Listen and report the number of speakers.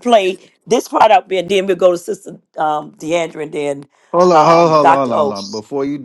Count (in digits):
2